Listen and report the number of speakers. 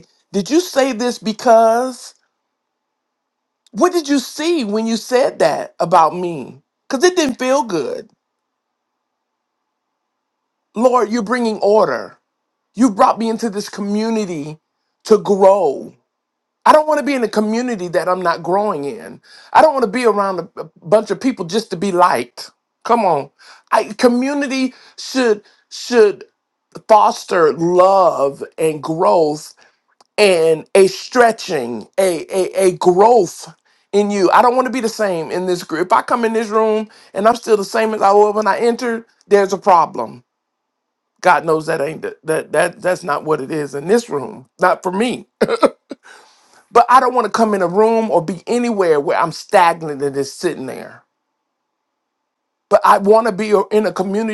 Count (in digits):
1